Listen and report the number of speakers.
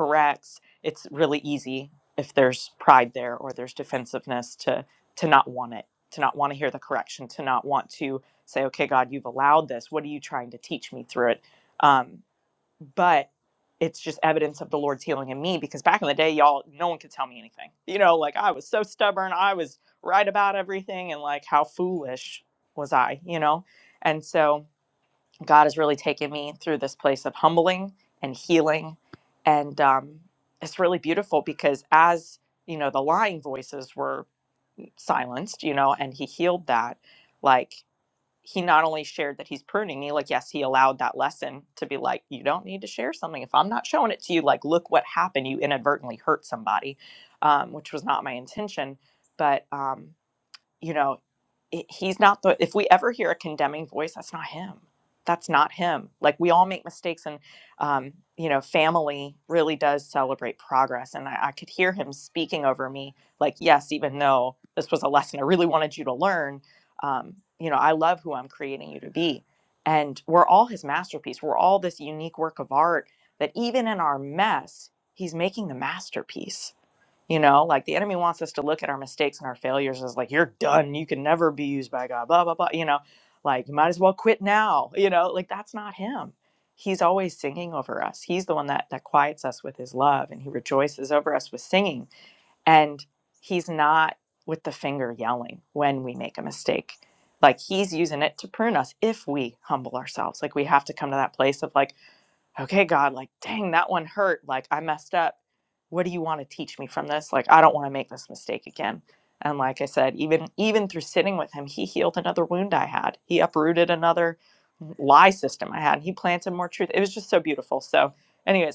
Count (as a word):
one